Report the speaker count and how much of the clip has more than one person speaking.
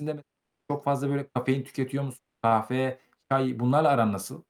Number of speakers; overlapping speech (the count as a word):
one, no overlap